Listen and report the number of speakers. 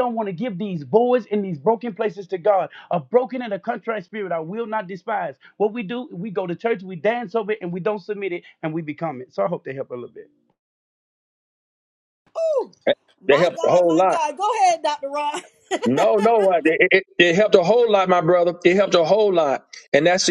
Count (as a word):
three